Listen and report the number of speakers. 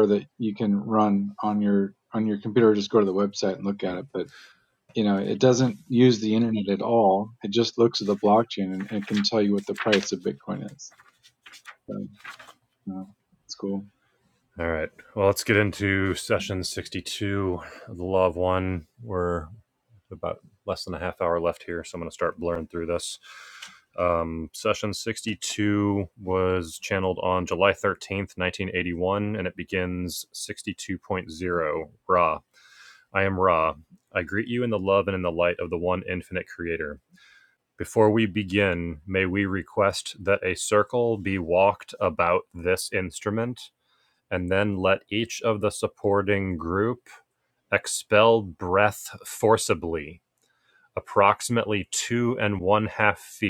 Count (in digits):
2